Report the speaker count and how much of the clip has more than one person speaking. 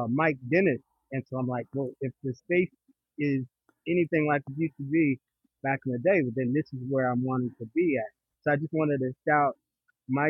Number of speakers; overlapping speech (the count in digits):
1, no overlap